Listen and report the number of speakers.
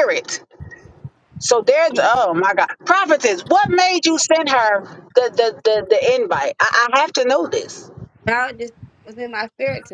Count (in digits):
2